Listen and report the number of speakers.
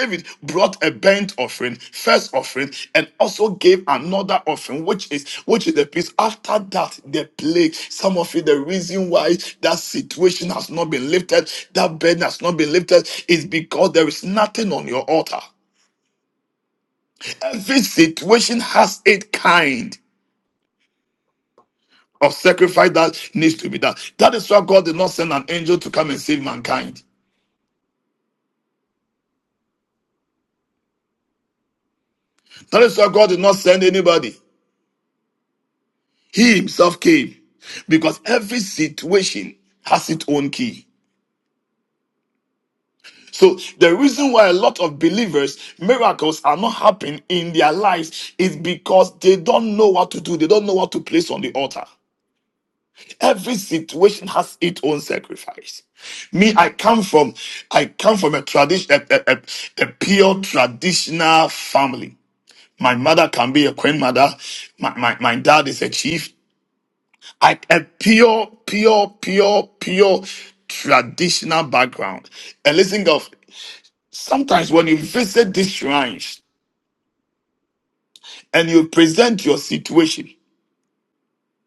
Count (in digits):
1